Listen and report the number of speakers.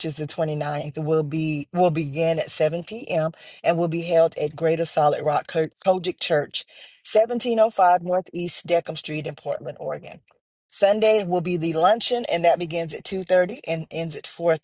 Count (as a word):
one